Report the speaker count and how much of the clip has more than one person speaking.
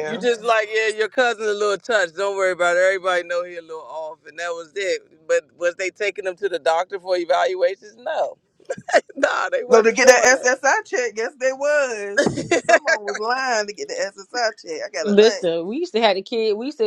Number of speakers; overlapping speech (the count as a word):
three, about 8%